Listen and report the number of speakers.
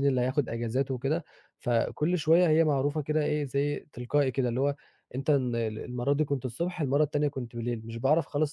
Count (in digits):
1